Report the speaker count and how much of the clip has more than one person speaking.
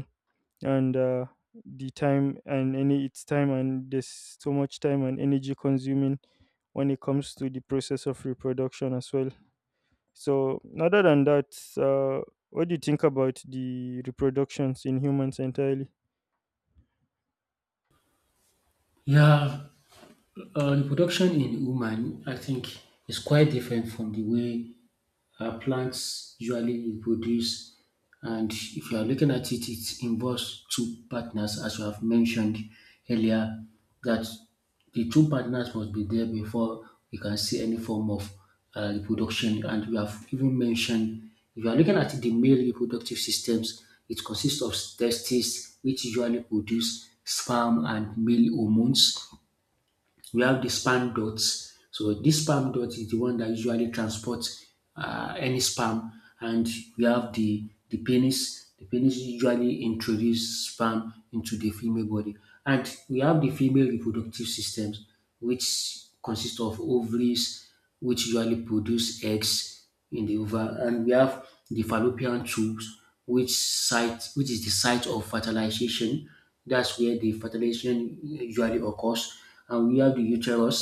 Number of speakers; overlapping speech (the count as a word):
two, no overlap